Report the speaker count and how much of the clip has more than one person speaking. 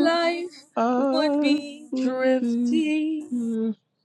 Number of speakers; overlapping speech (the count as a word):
two, about 45%